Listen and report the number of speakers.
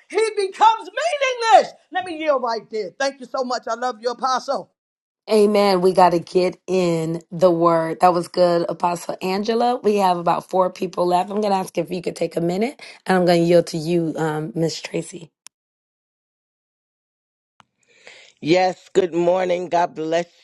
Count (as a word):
three